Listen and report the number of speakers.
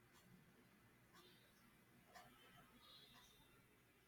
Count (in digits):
0